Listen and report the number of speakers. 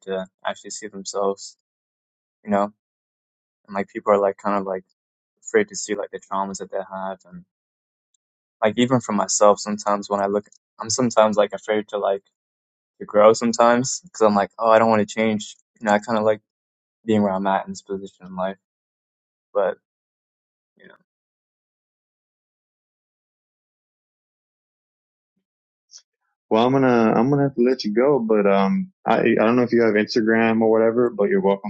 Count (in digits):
2